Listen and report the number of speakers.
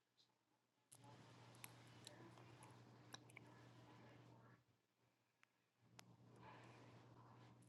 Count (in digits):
0